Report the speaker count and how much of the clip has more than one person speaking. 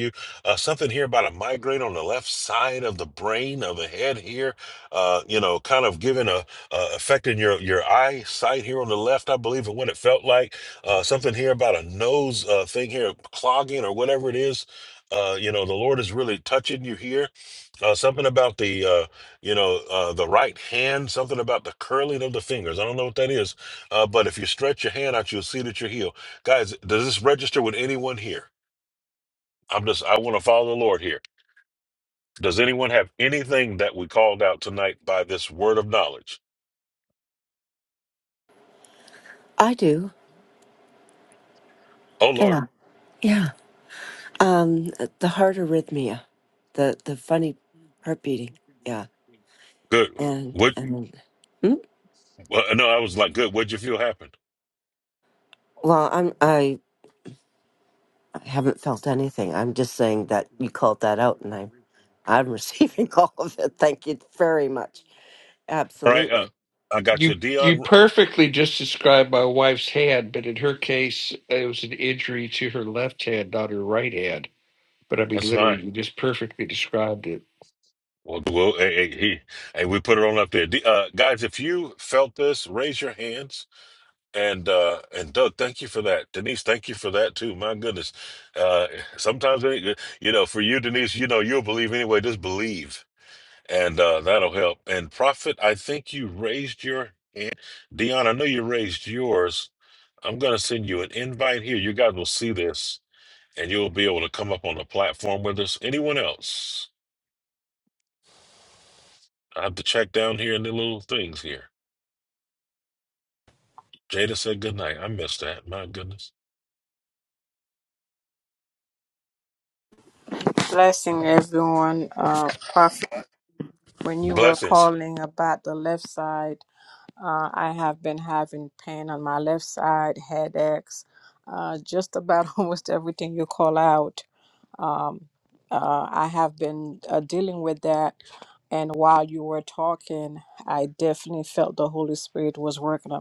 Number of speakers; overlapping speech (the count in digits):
4, about 2%